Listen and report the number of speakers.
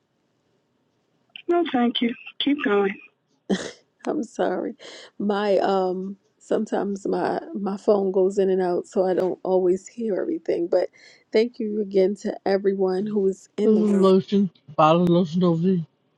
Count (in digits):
3